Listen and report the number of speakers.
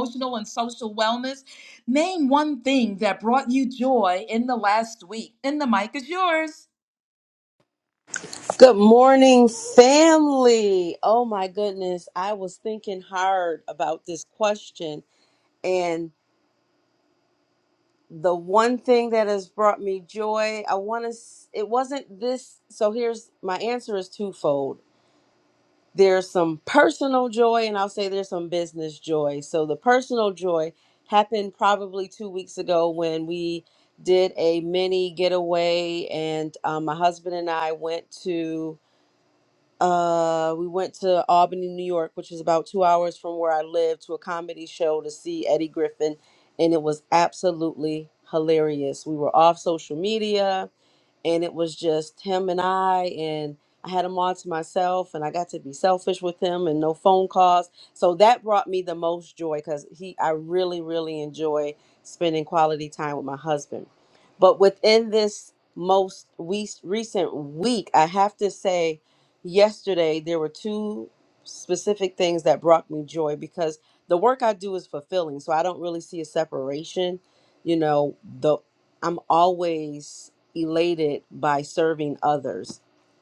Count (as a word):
two